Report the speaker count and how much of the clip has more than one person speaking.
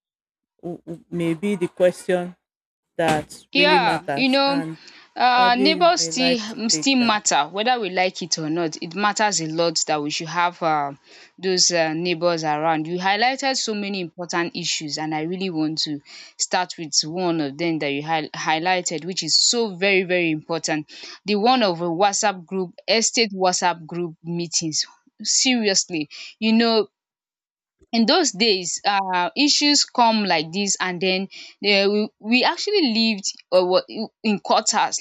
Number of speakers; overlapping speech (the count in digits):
2, about 8%